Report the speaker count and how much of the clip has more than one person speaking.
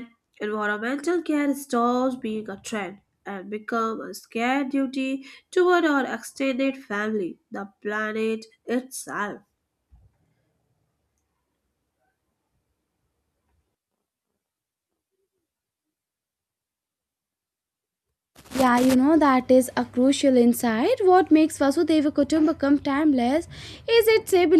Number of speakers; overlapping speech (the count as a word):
two, no overlap